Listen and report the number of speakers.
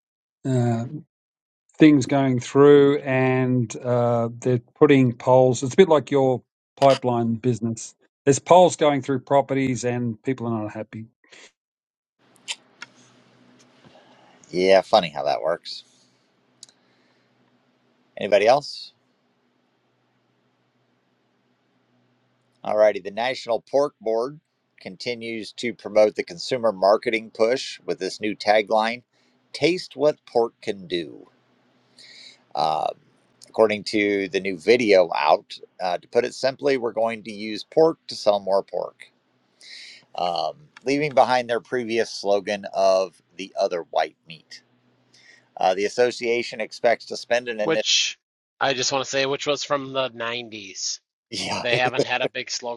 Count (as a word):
three